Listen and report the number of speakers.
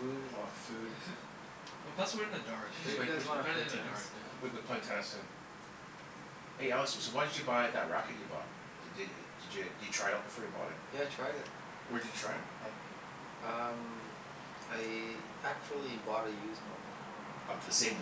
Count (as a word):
three